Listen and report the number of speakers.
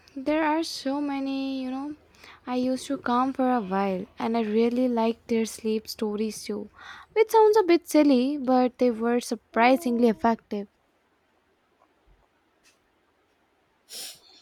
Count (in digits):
1